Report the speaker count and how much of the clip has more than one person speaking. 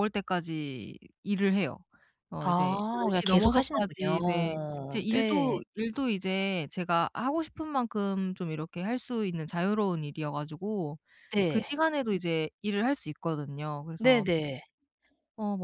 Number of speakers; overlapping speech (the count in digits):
2, about 20%